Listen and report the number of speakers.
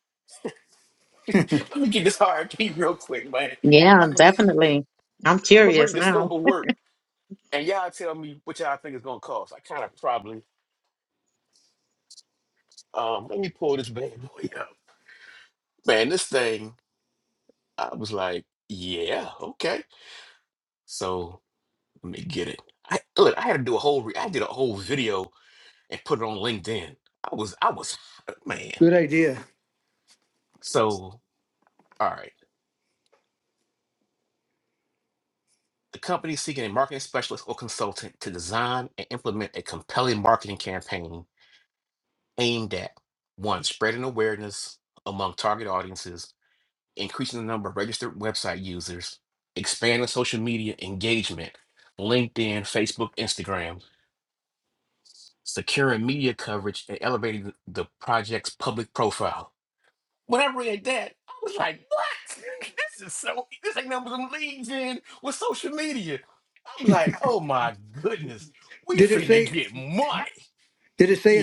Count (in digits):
3